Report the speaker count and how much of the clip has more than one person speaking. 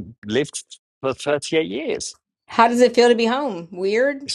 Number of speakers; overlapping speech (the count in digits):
2, no overlap